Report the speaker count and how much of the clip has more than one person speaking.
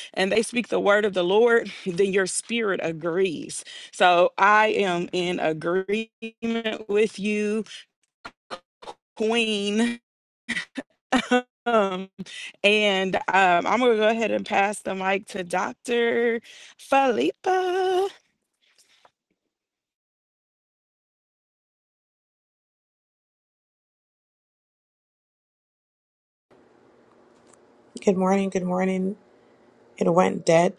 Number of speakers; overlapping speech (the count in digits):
2, no overlap